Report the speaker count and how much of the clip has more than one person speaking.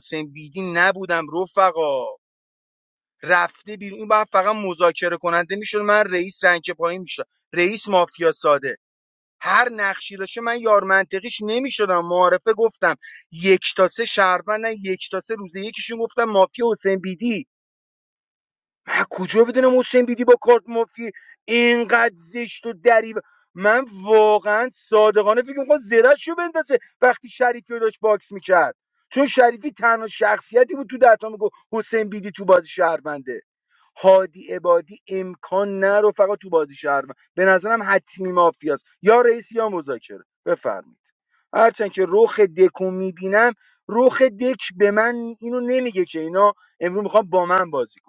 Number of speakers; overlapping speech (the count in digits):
1, no overlap